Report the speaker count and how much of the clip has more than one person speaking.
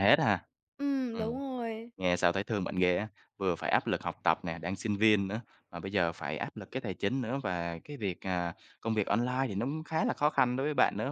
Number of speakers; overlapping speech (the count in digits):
2, about 2%